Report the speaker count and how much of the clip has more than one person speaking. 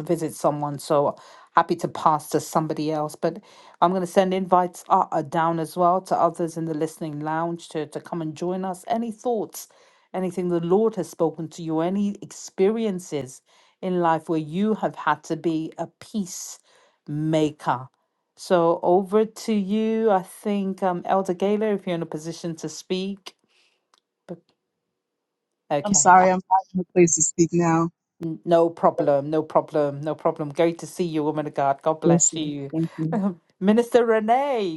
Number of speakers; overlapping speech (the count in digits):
2, about 3%